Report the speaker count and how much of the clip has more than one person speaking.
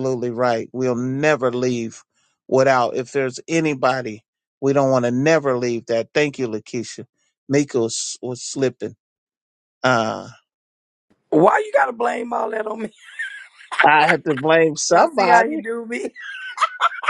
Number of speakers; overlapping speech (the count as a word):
two, about 4%